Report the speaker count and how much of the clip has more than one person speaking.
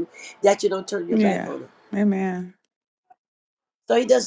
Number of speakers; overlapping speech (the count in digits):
2, about 10%